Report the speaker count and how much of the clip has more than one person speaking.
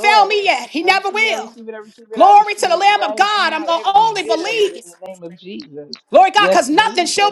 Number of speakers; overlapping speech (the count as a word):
two, about 64%